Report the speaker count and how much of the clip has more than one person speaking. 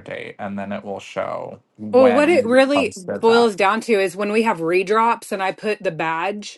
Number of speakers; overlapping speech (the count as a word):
two, about 24%